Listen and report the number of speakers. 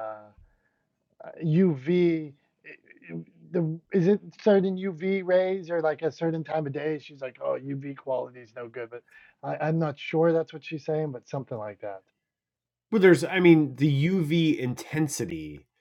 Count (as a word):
two